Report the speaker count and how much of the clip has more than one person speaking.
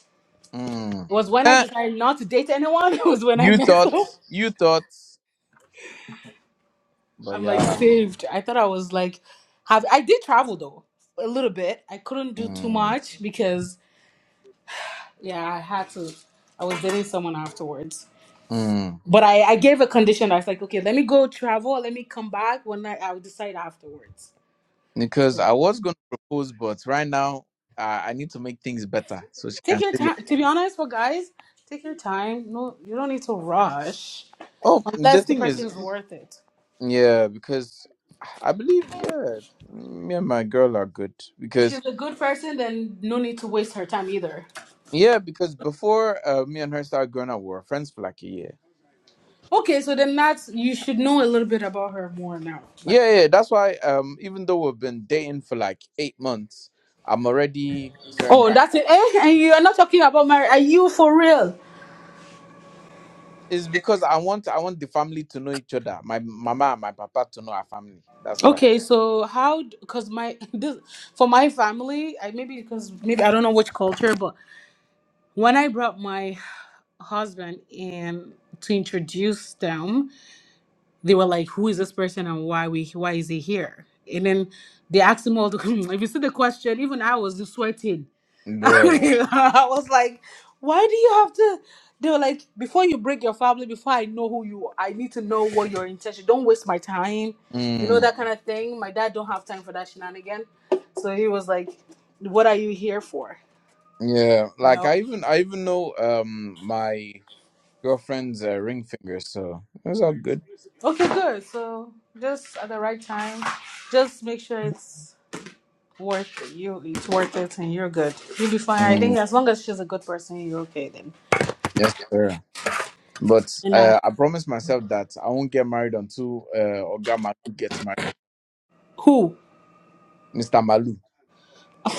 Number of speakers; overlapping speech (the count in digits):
2, about 4%